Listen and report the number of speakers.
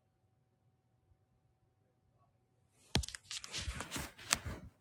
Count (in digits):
0